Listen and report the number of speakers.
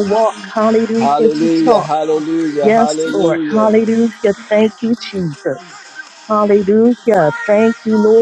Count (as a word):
two